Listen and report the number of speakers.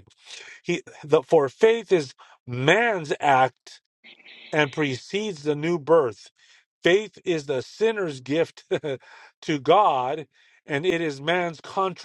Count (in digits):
1